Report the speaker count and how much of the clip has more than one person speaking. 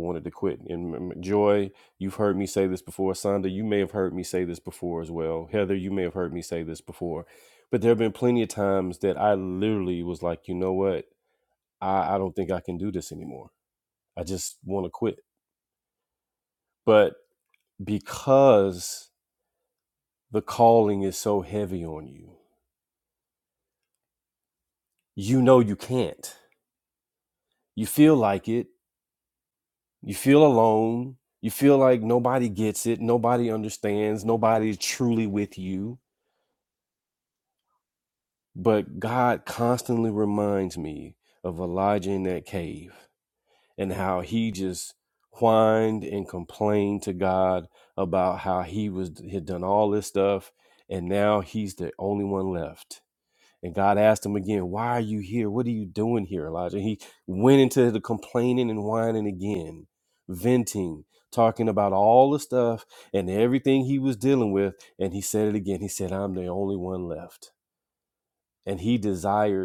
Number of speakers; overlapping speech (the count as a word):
one, no overlap